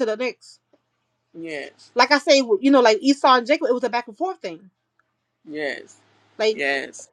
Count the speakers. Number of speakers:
2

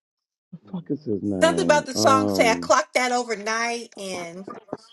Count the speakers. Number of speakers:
2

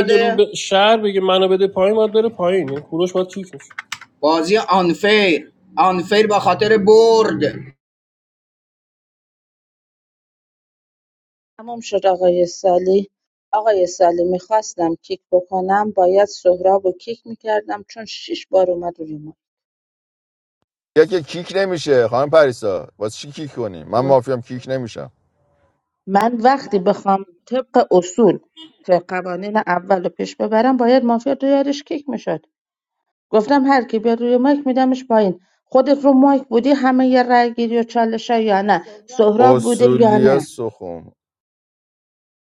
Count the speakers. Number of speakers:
4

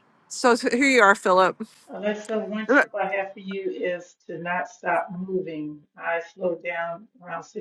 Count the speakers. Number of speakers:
2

